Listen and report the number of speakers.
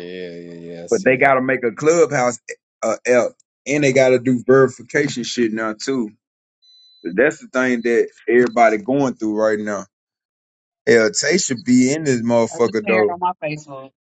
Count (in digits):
3